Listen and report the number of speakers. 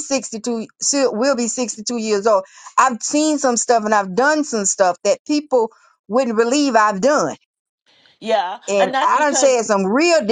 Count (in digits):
2